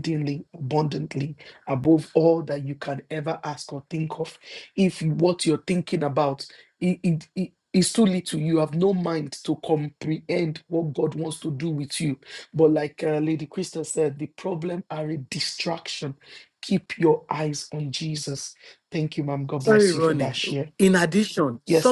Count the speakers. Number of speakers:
2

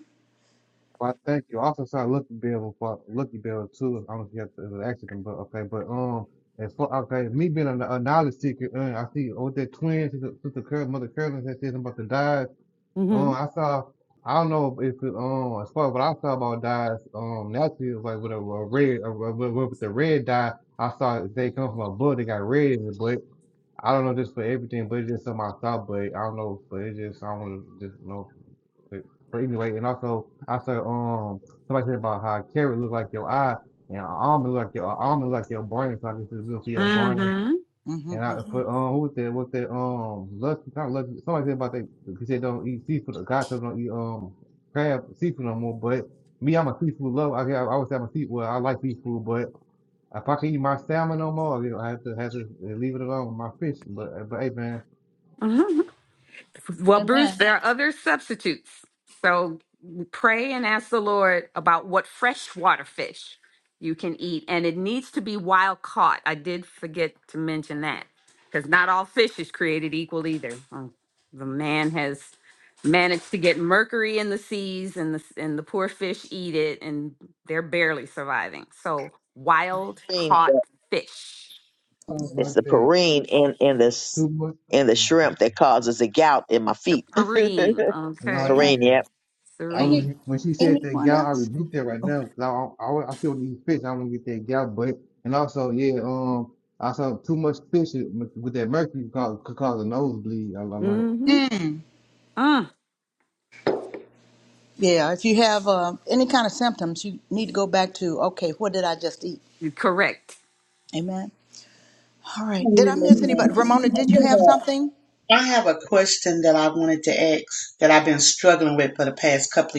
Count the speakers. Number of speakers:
5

